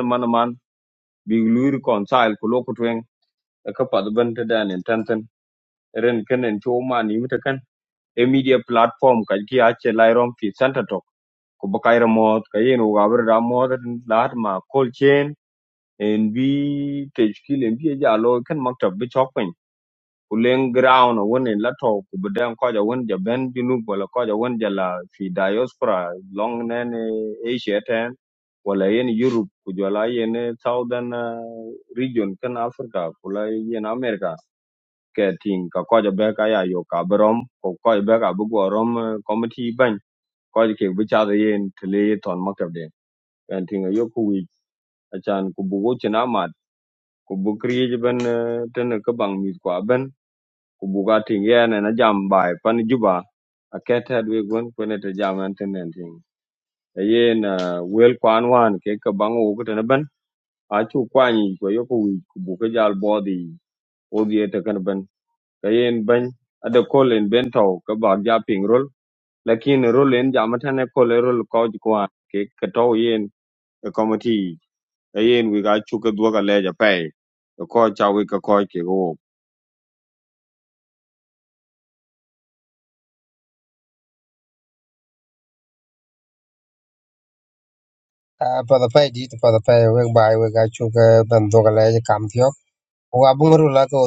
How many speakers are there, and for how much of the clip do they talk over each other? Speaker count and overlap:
two, no overlap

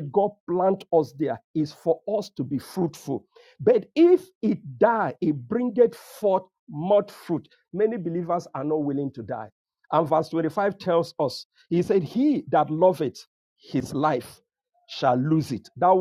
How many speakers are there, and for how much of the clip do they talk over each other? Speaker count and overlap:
one, no overlap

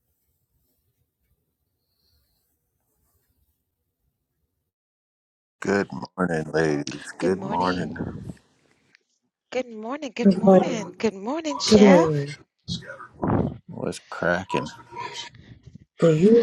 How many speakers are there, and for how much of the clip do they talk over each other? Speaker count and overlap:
three, about 13%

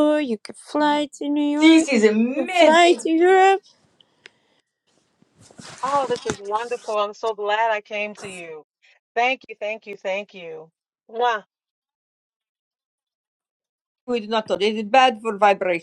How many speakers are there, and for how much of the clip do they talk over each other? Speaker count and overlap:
three, about 6%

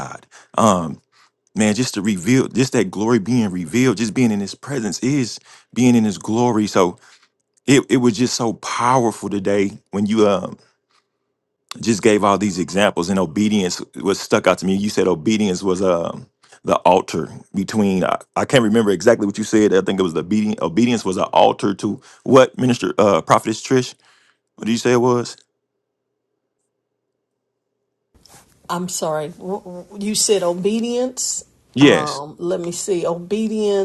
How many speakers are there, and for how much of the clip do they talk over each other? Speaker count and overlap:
two, about 1%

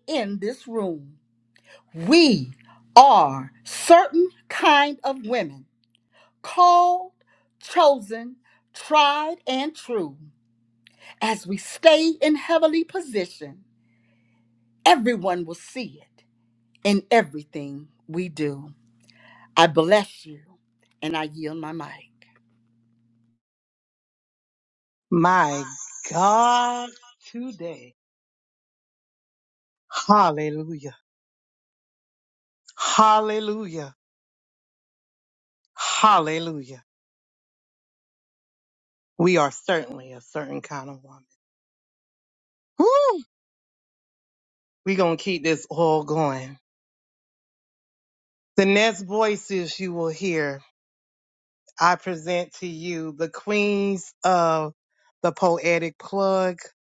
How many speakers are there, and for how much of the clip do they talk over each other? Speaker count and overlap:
two, no overlap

